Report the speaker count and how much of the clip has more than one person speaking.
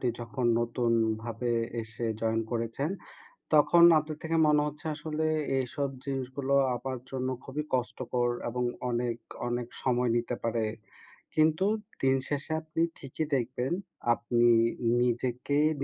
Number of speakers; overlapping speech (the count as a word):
one, no overlap